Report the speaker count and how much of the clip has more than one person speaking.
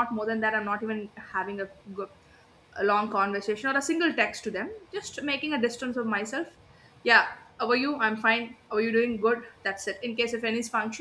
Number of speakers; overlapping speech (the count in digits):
1, no overlap